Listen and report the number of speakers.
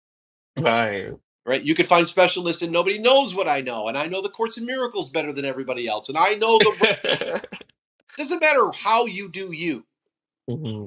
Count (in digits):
2